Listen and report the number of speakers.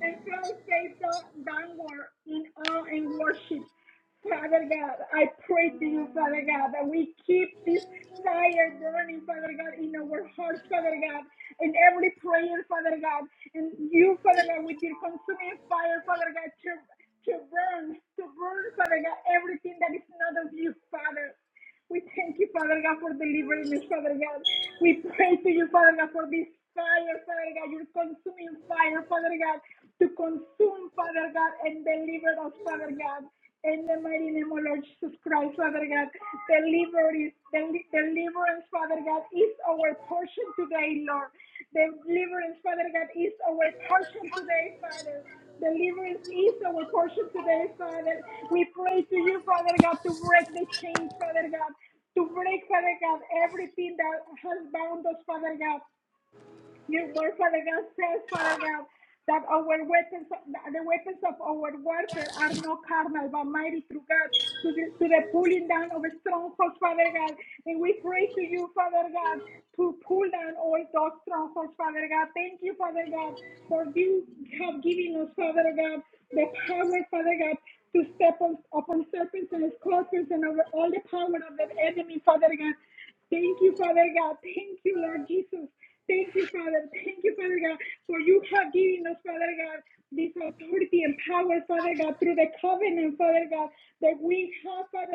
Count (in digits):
1